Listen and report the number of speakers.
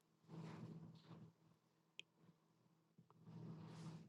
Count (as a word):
zero